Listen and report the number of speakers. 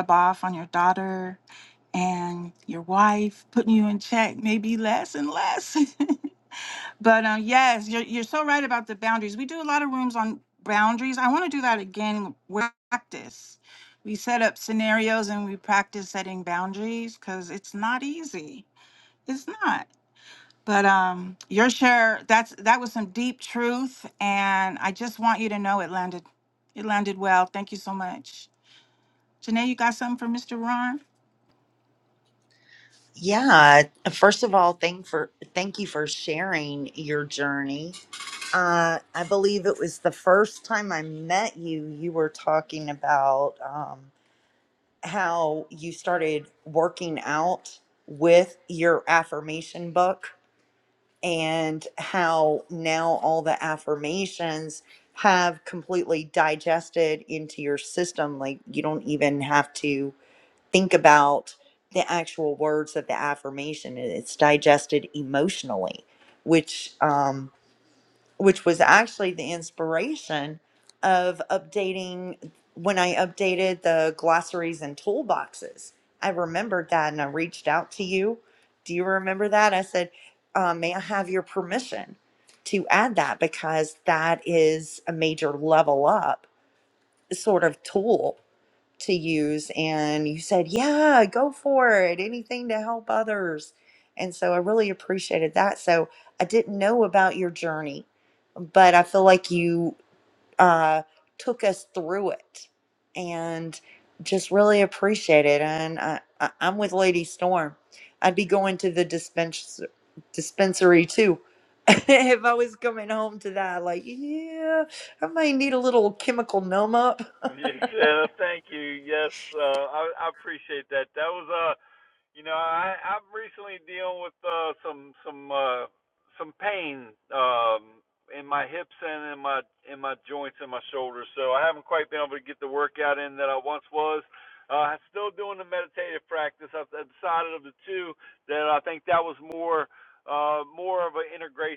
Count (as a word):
three